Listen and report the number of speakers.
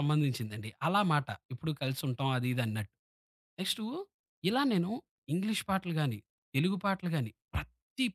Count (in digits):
1